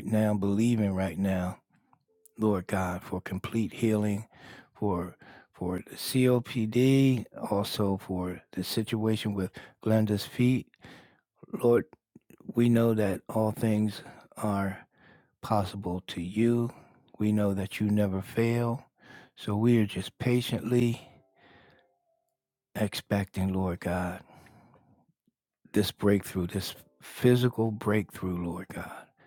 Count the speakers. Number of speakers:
1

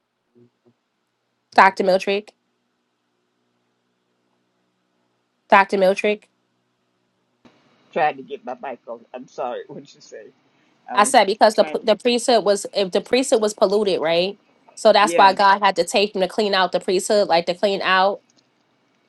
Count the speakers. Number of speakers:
2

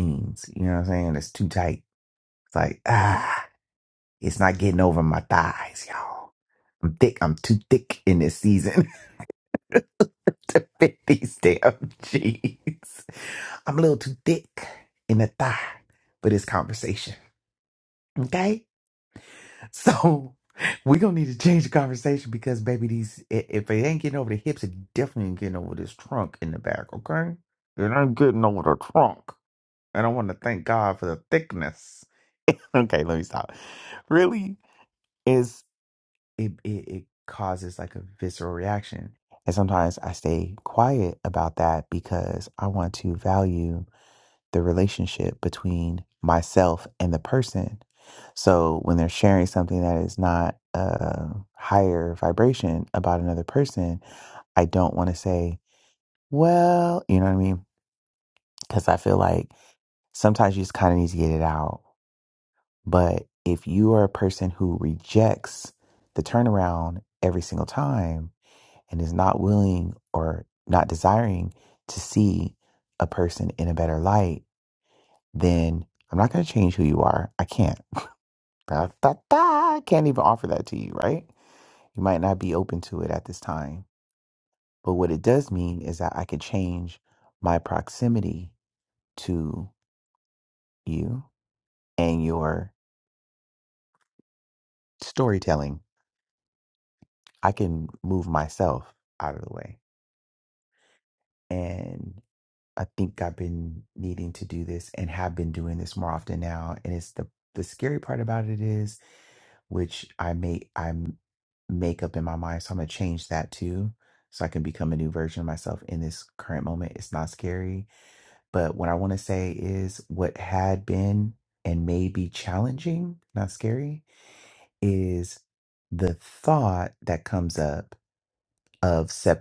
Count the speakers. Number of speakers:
1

